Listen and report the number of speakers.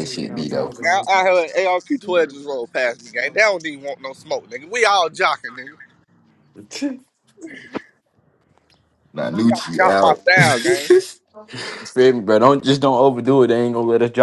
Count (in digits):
3